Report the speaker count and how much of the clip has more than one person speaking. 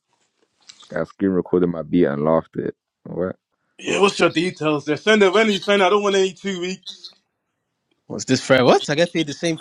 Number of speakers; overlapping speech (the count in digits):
3, no overlap